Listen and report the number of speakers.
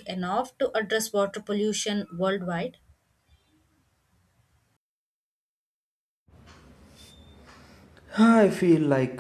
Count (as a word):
two